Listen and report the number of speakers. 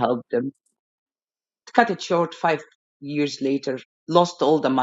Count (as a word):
one